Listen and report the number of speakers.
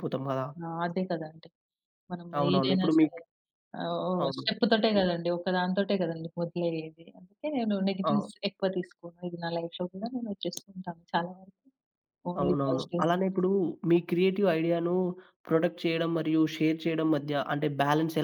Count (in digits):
2